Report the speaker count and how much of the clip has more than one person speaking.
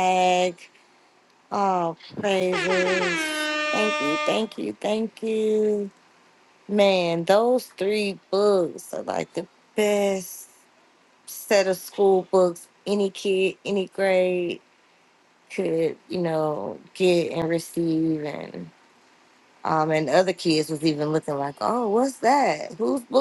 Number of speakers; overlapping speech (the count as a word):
one, no overlap